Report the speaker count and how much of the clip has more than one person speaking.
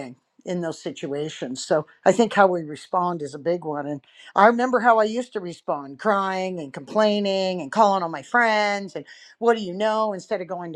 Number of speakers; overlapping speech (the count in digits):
1, no overlap